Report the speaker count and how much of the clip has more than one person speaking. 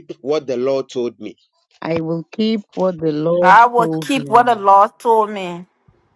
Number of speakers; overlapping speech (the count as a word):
three, about 19%